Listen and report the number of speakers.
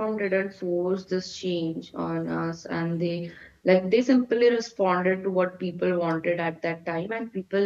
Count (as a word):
one